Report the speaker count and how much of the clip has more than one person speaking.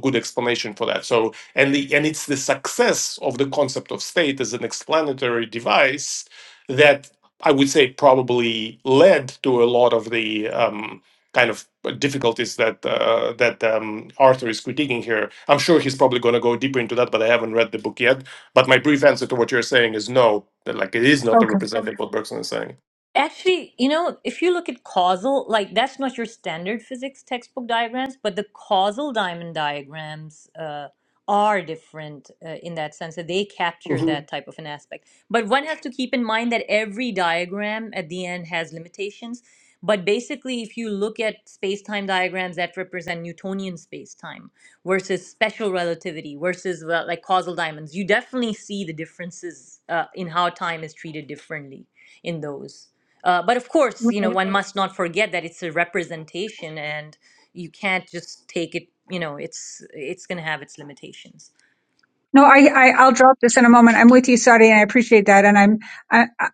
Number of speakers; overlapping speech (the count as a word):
three, about 1%